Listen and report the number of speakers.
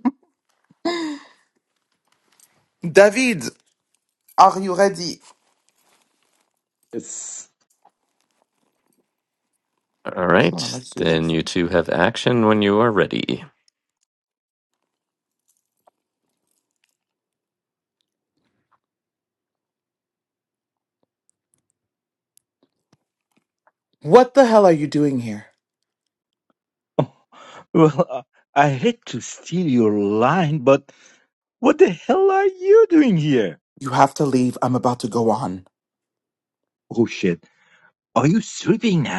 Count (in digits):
3